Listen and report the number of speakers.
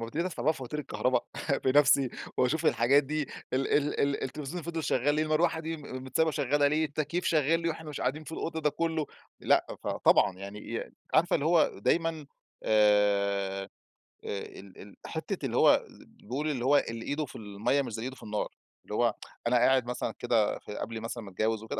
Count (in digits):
1